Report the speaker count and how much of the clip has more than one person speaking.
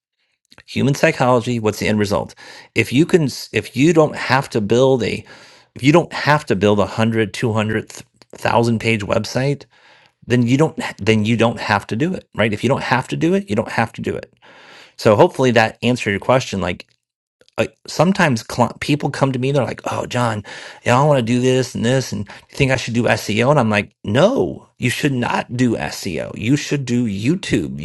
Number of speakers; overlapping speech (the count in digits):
1, no overlap